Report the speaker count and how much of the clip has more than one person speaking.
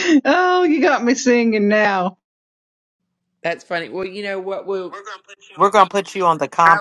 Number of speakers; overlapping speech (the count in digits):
3, about 2%